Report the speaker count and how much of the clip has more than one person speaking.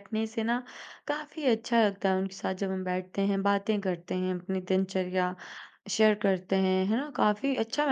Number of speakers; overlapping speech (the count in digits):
1, no overlap